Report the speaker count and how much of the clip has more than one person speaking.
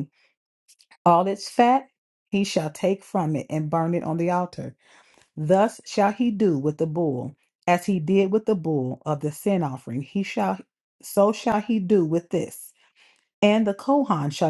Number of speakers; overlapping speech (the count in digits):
1, no overlap